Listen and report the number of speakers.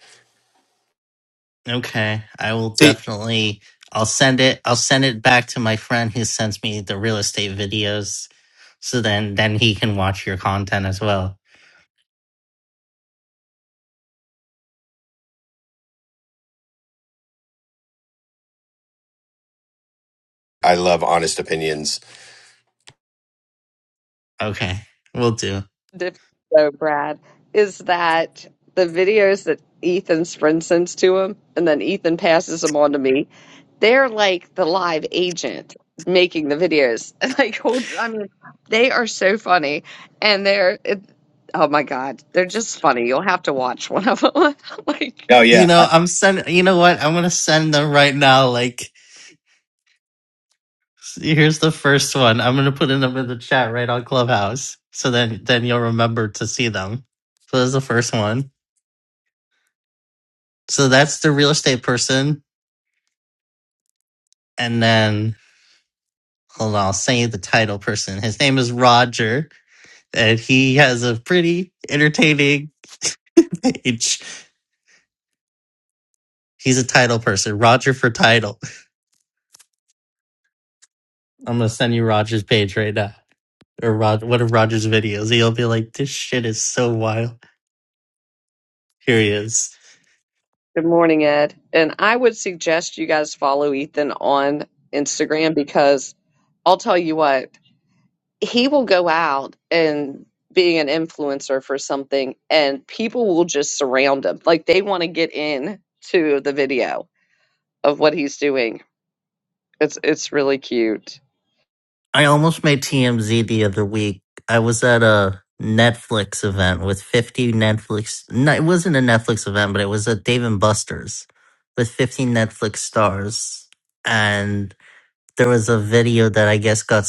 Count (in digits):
3